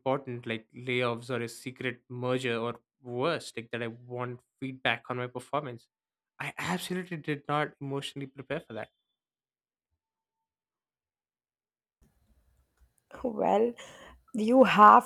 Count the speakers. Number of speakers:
two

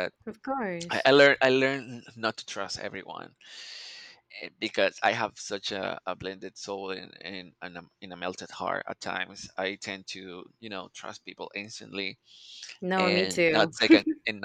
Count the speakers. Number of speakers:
two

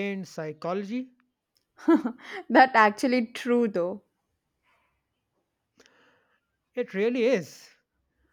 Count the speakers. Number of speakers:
two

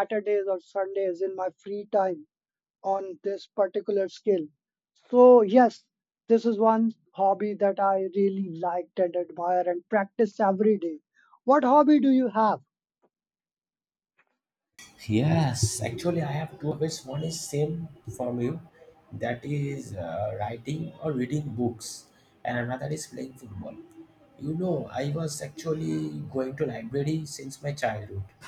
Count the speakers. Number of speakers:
two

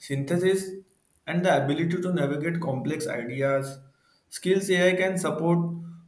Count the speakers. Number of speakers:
one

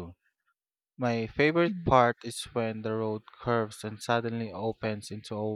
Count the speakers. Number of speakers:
one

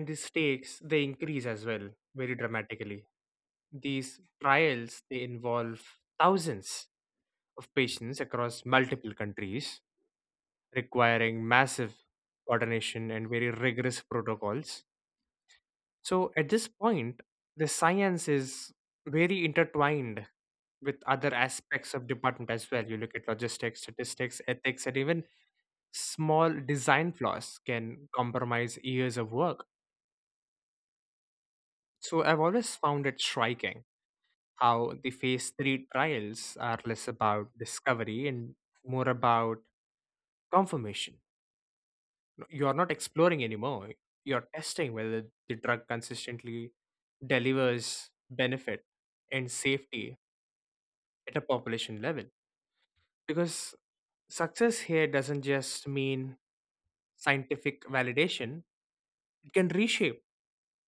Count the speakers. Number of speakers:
one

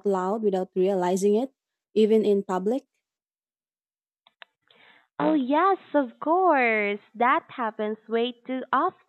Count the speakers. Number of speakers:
two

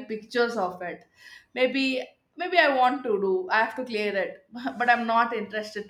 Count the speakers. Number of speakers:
one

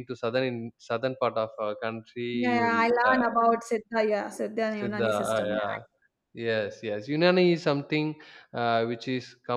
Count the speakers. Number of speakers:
two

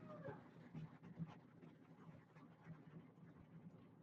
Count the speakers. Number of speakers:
zero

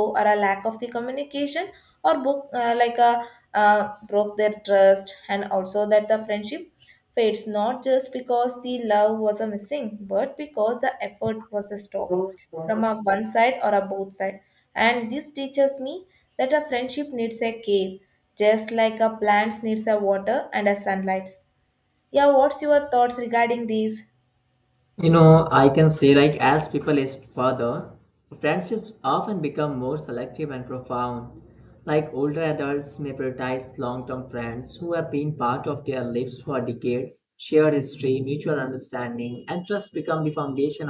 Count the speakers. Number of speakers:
two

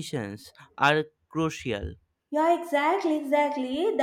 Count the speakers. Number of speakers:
two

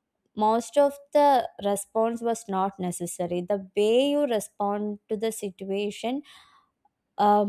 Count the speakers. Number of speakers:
one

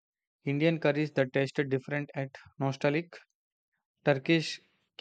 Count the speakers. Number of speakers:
one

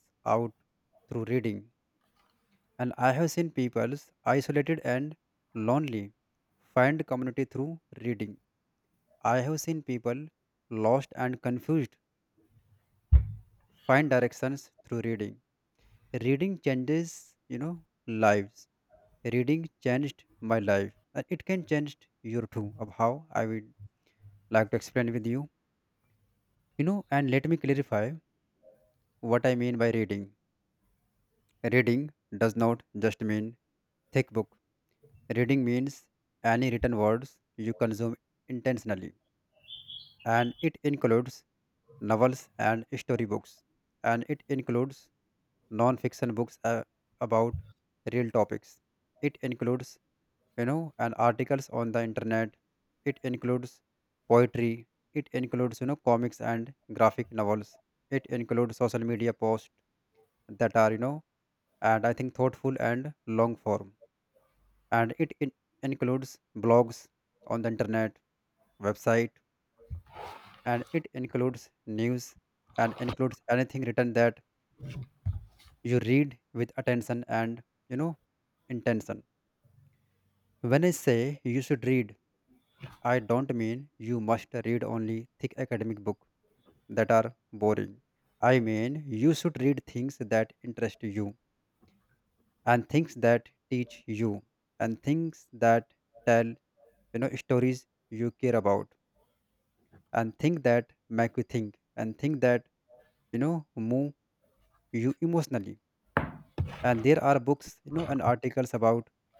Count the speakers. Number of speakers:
one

